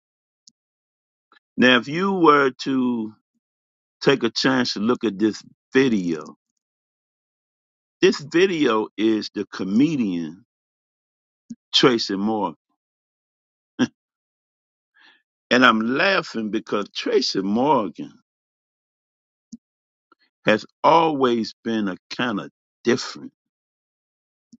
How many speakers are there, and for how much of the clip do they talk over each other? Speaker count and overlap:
1, no overlap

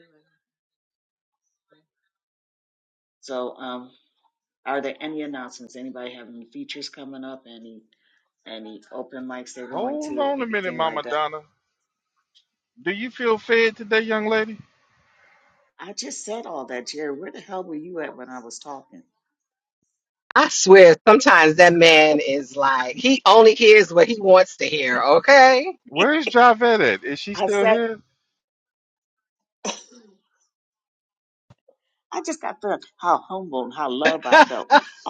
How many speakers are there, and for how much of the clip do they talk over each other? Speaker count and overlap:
3, about 6%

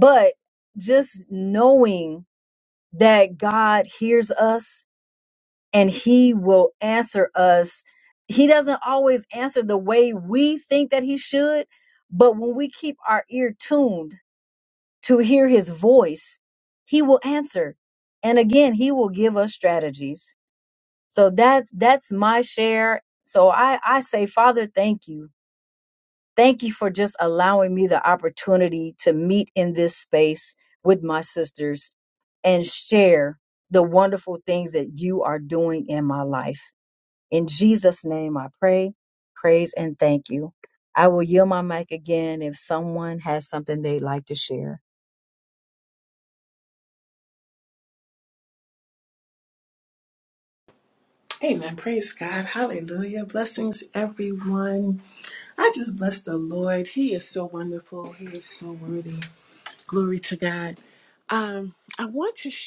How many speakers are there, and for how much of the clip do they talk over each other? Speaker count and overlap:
2, no overlap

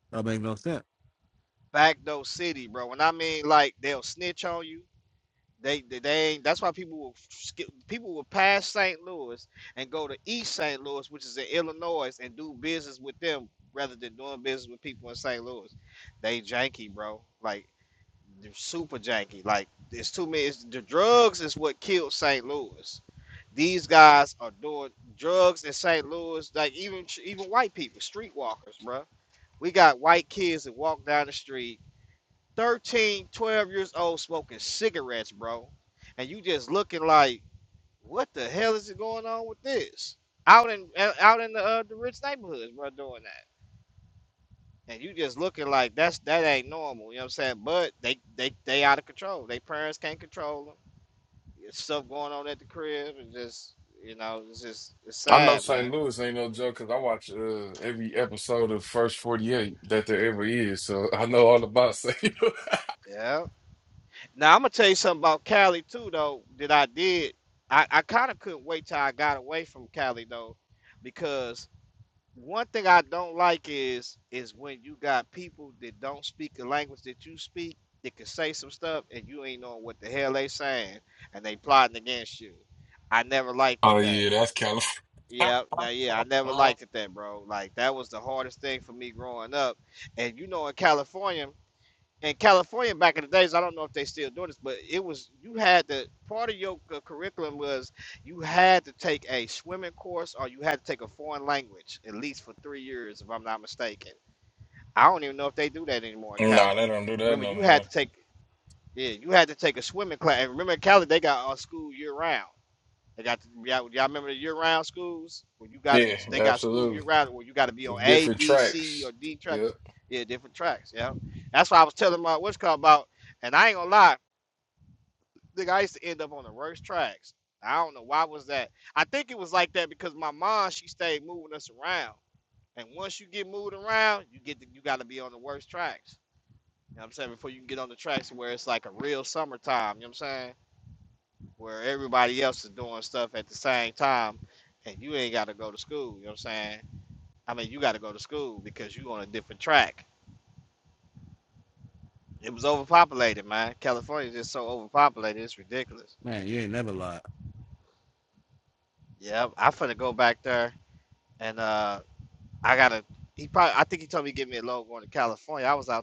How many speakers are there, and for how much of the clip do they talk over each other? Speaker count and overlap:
3, about 3%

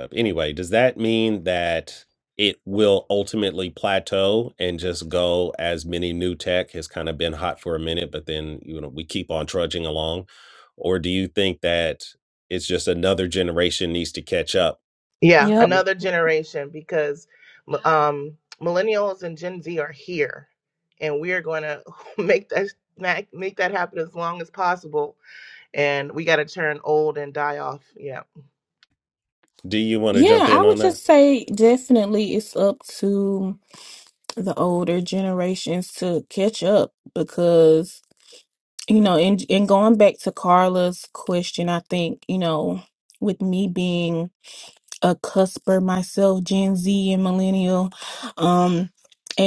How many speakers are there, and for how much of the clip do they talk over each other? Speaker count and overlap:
3, about 3%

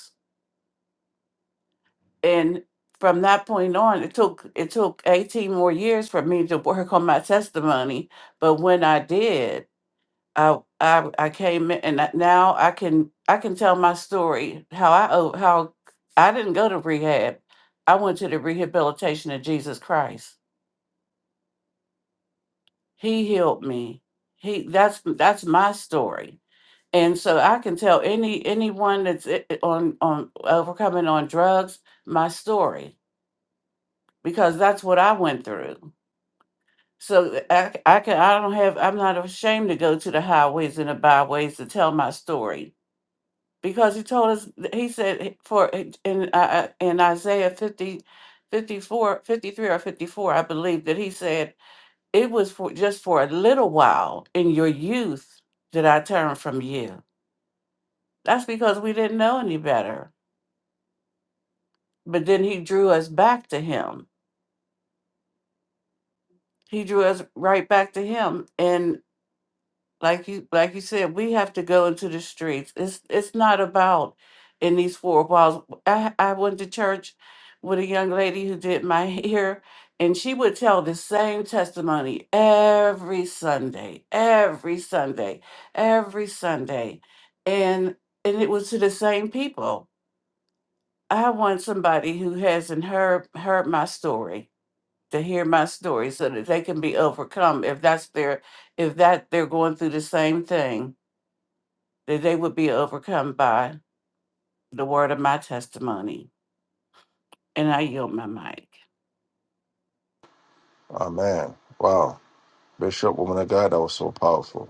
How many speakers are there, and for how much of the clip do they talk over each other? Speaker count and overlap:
2, no overlap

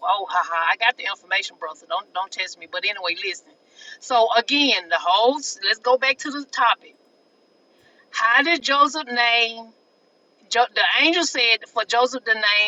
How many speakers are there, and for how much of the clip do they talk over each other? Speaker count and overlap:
1, no overlap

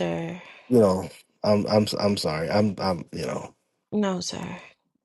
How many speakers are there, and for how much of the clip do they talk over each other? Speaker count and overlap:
2, no overlap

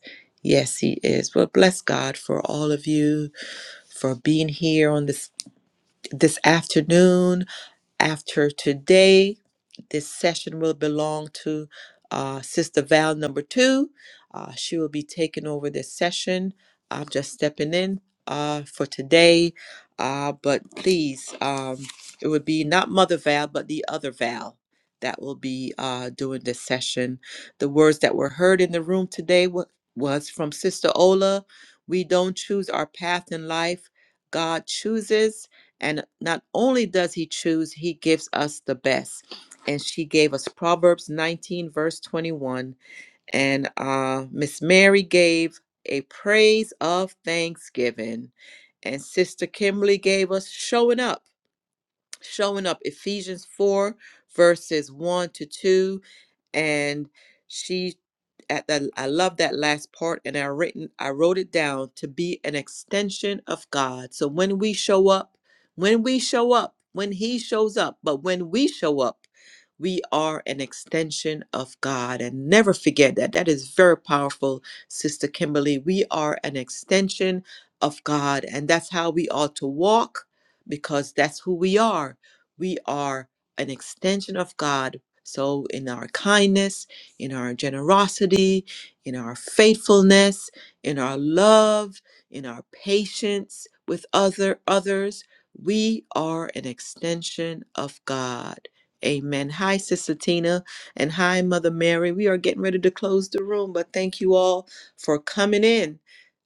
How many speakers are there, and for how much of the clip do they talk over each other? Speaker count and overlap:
1, no overlap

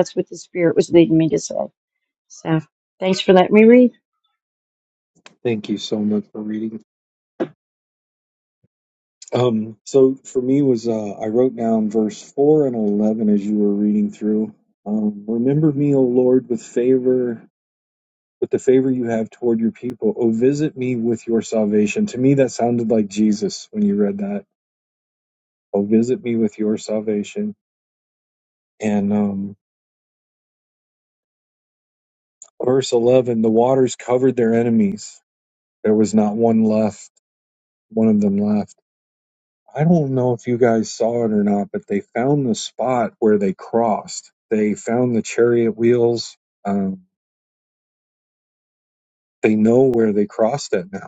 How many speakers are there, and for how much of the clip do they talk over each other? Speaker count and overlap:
2, no overlap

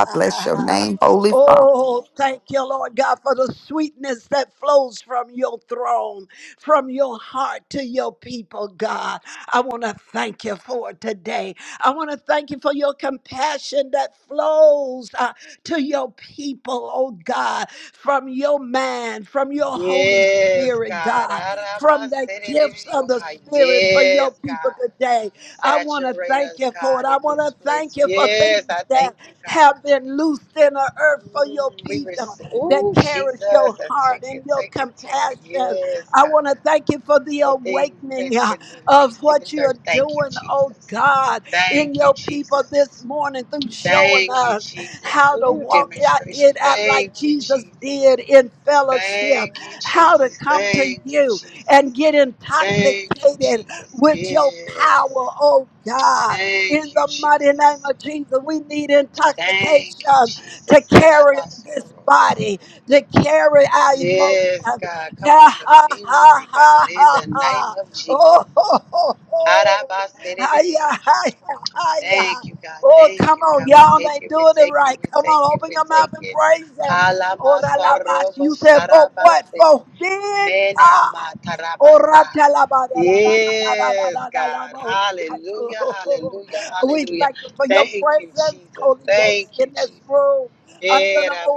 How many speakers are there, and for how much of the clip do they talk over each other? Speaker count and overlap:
3, about 46%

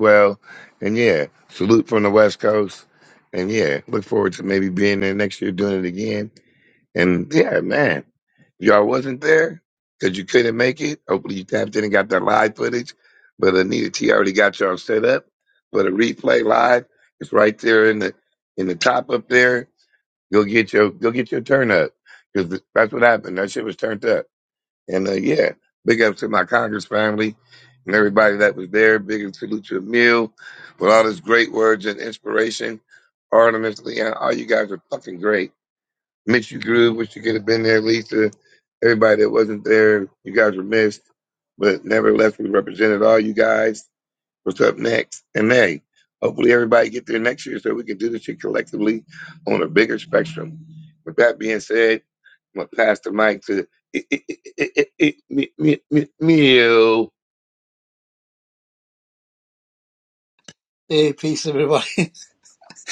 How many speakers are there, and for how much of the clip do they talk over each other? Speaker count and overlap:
2, no overlap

